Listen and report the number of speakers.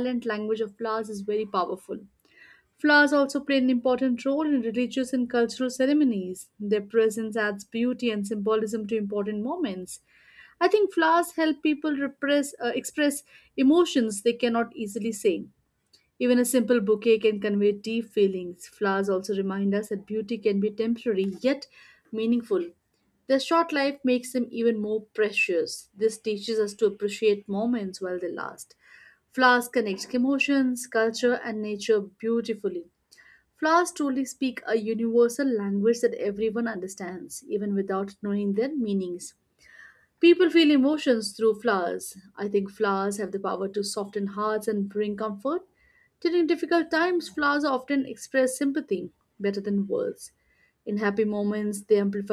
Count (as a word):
one